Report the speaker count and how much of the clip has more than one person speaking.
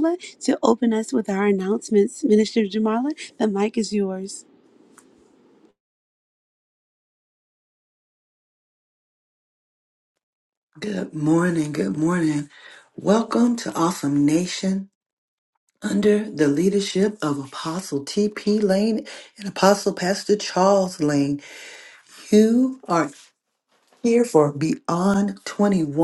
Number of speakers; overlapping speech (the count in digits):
2, no overlap